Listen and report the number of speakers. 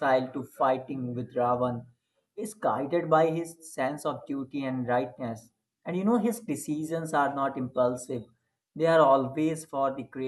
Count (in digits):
1